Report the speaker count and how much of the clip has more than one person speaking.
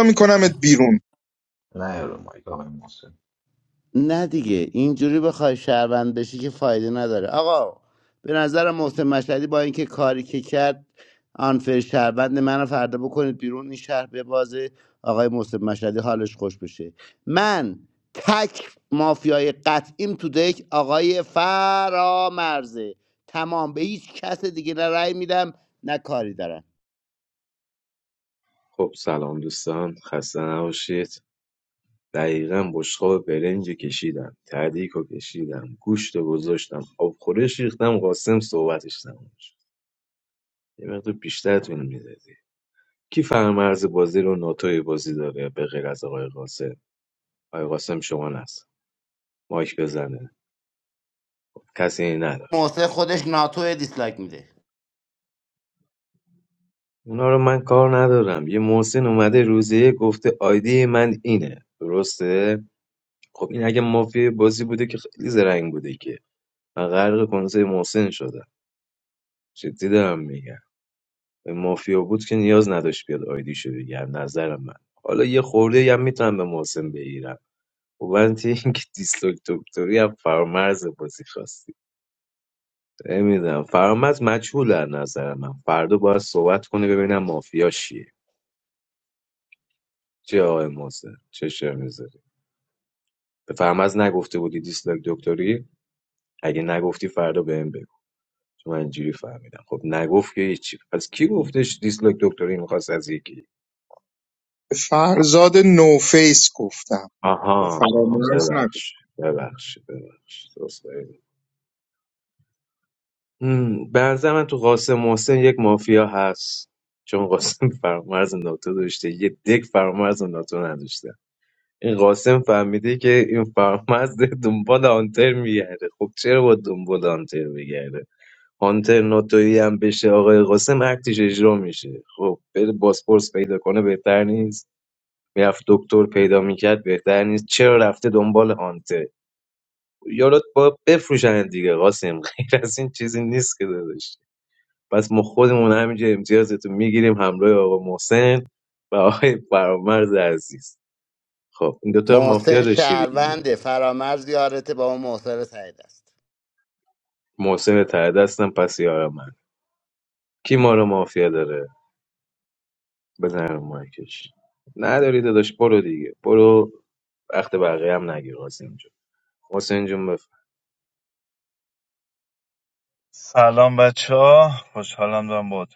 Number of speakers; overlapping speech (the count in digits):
5, about 1%